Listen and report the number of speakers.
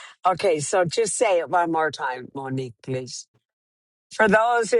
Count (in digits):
1